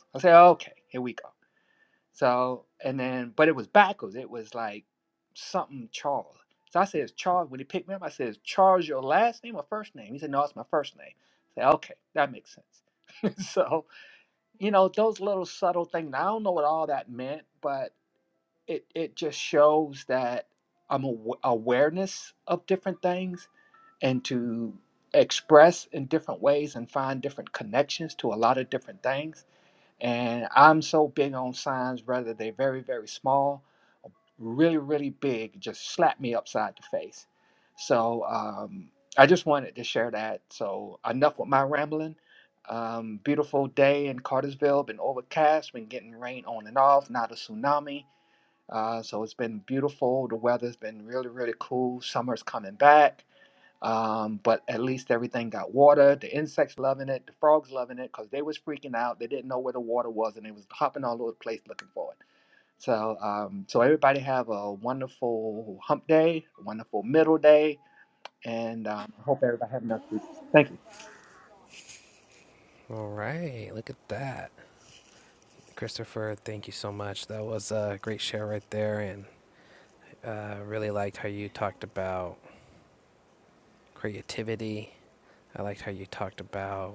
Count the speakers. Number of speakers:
2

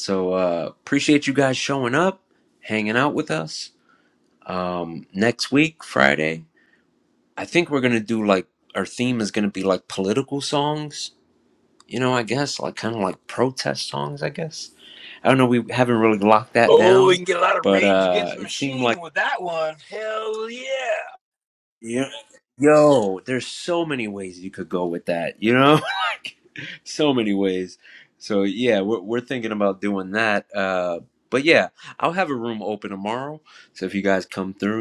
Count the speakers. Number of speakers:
2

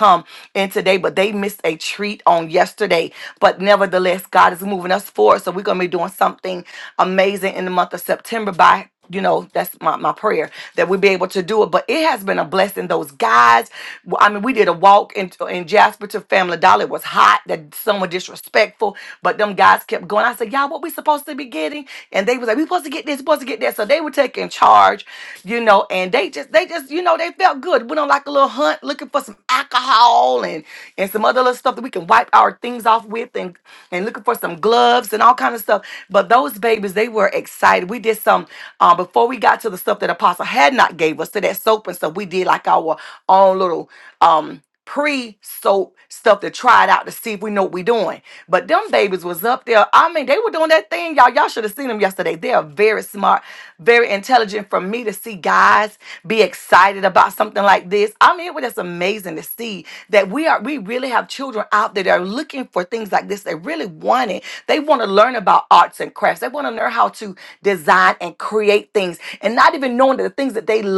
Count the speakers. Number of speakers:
1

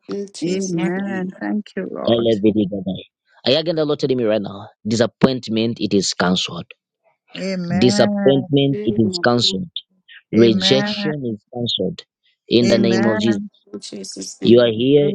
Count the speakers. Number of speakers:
3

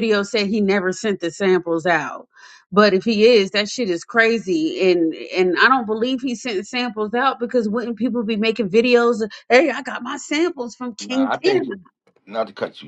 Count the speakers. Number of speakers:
2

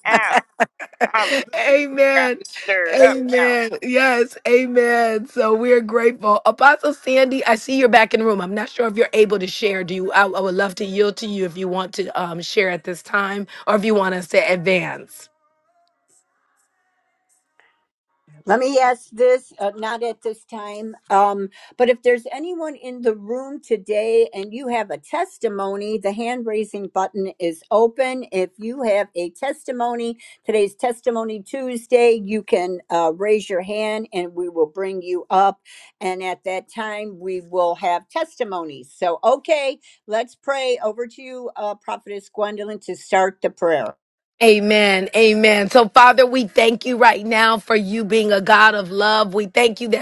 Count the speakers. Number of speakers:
3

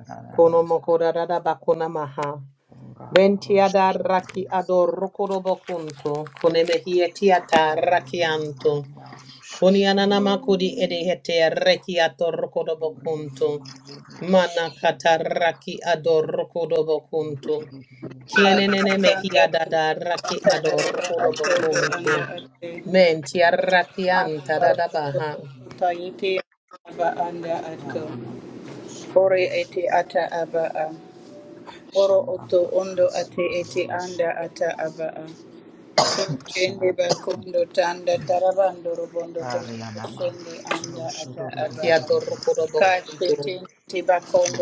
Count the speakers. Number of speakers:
3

